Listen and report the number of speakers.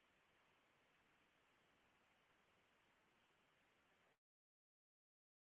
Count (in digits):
0